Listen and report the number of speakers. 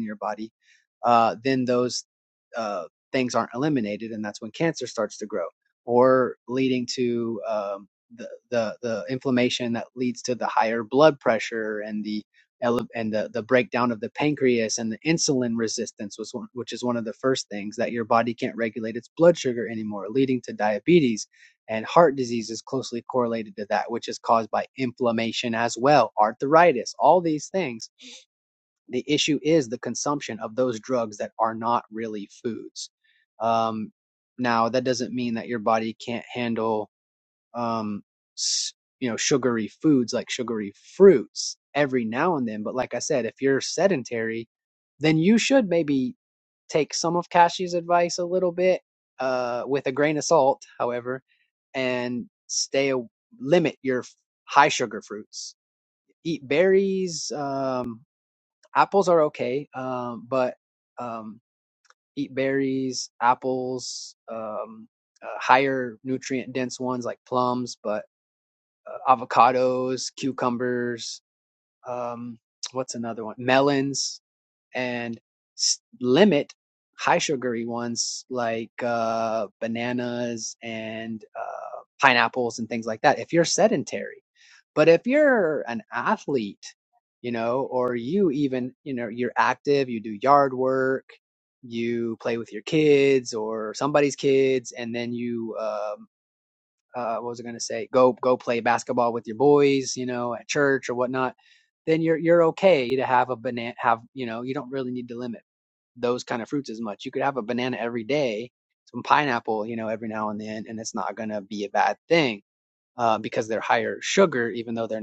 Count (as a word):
one